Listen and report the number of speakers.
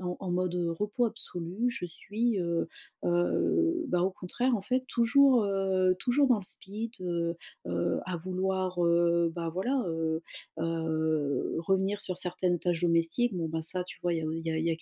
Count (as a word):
one